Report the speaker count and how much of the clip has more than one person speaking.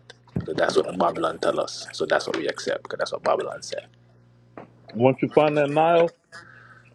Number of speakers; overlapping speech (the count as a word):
two, no overlap